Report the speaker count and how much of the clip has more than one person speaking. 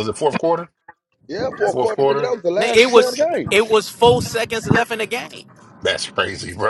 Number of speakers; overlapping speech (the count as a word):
three, about 22%